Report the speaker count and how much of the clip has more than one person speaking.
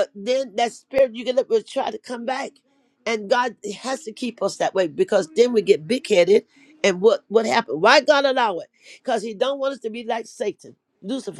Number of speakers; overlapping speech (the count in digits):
1, no overlap